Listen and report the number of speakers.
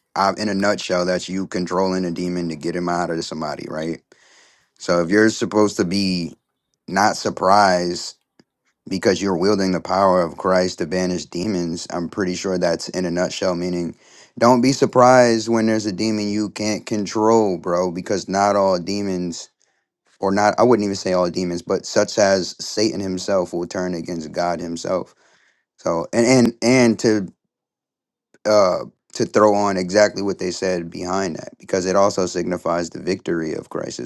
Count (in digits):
1